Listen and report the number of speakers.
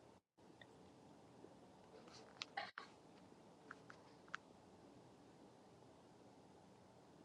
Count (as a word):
zero